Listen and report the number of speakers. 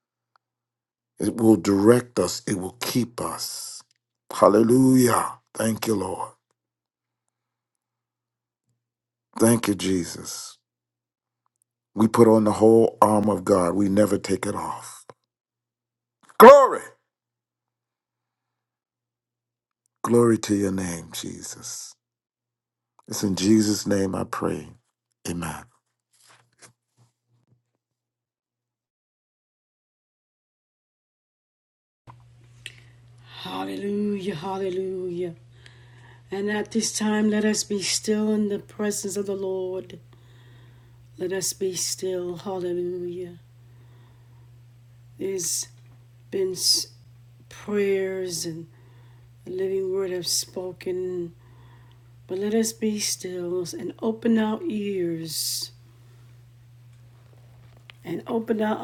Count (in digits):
2